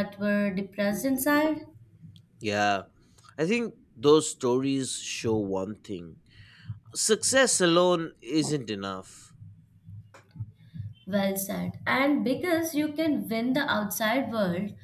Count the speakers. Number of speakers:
two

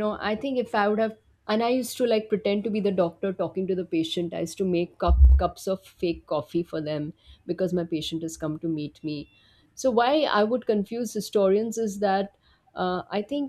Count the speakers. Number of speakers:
one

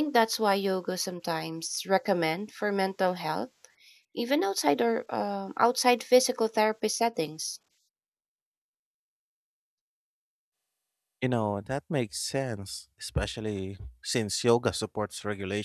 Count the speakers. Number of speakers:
two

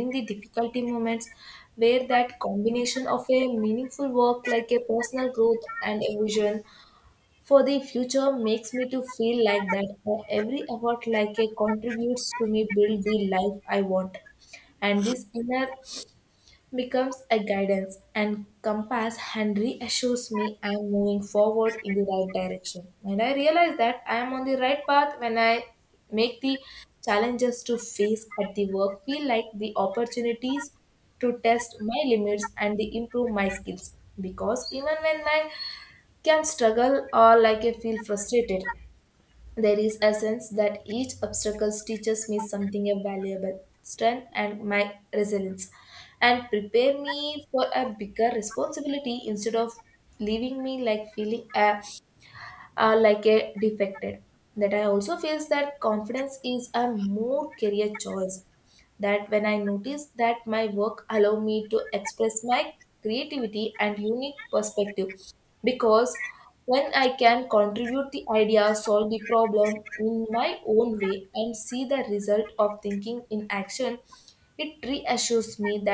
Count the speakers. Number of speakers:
one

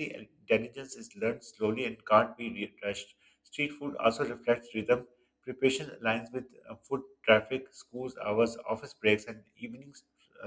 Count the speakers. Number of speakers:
one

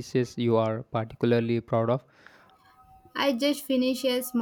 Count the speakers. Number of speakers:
two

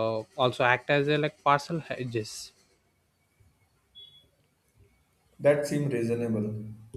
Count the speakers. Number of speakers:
two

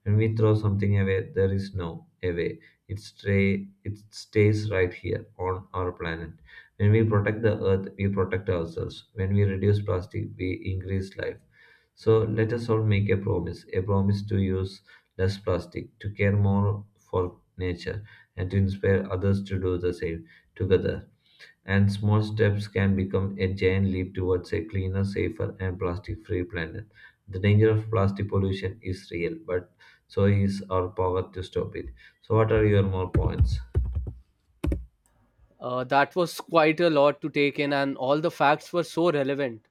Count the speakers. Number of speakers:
two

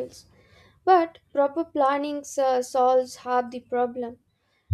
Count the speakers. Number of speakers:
one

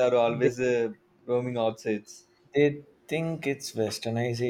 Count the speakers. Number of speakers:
two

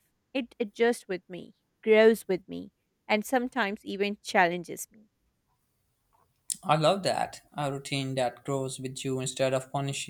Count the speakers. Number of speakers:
two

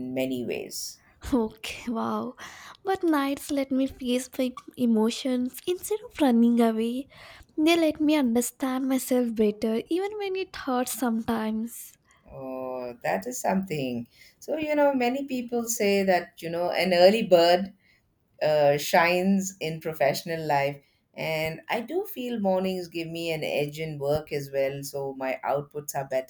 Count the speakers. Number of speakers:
two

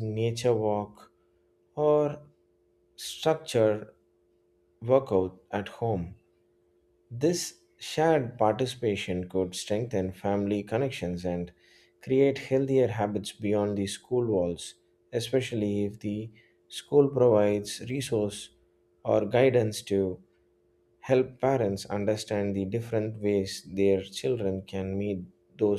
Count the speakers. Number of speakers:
one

